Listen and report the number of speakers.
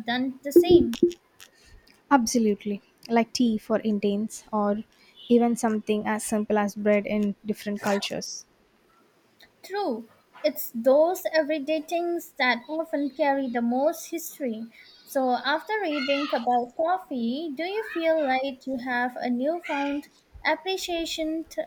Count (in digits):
2